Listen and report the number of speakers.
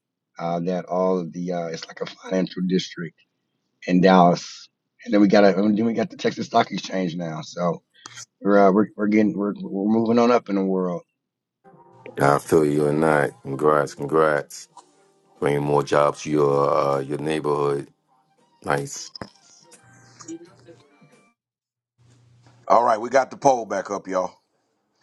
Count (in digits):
3